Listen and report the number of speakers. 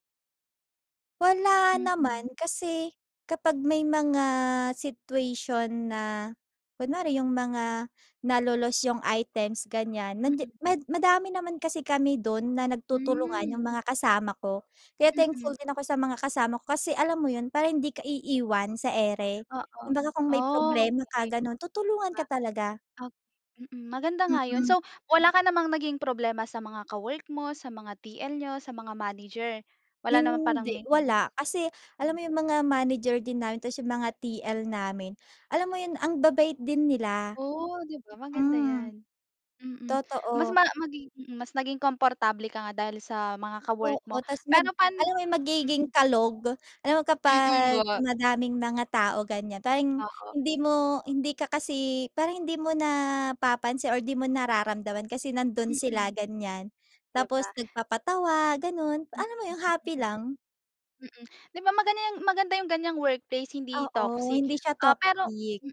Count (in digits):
2